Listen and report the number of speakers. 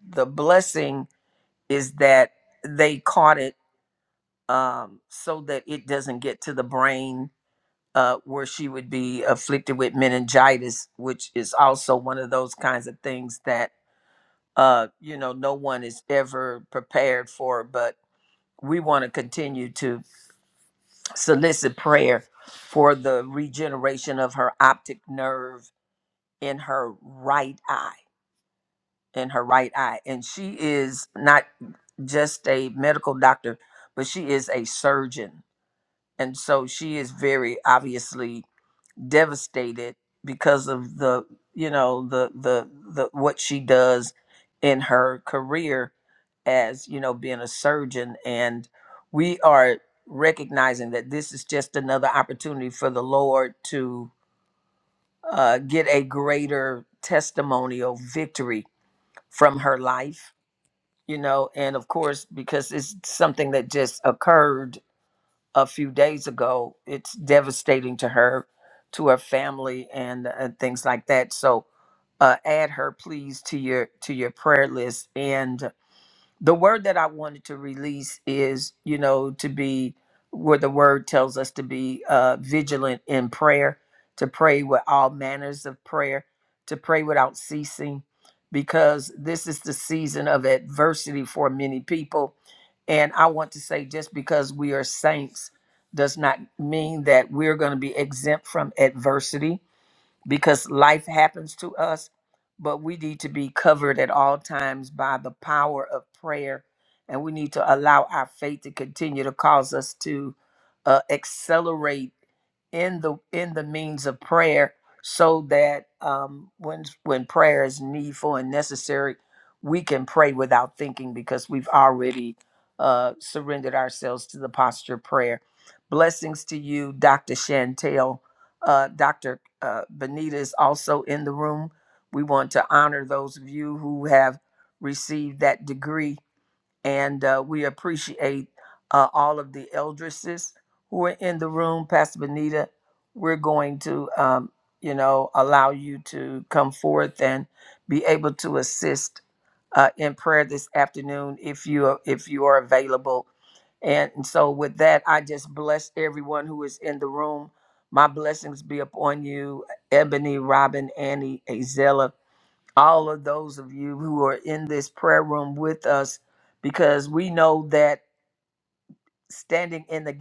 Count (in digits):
1